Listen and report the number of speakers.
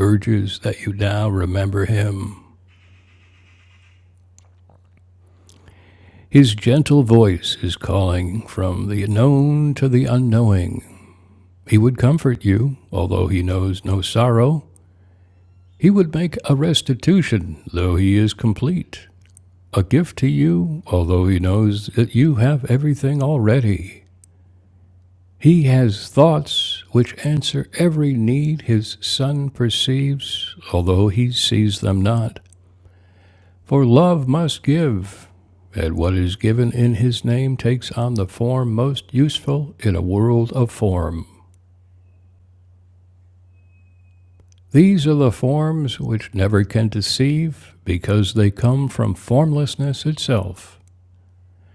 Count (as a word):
one